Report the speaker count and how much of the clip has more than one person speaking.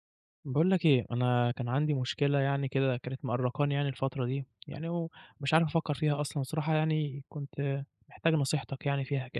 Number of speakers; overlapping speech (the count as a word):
one, no overlap